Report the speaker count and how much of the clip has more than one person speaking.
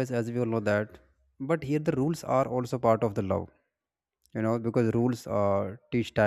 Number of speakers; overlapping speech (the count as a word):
one, no overlap